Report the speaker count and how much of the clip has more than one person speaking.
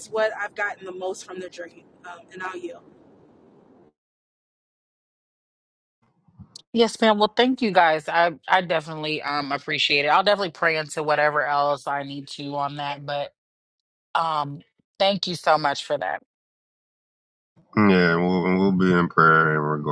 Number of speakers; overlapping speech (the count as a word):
three, no overlap